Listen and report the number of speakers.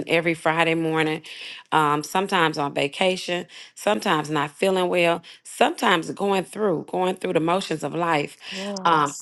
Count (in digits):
1